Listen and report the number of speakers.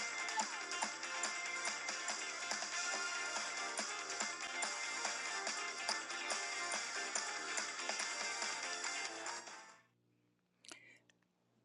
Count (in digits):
0